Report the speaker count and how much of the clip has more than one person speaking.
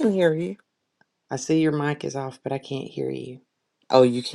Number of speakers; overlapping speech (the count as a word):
two, no overlap